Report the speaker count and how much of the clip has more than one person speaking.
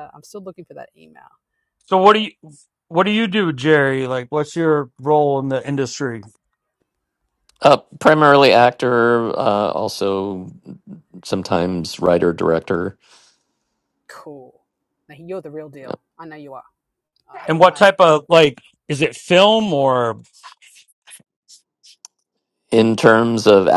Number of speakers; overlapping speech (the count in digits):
3, about 3%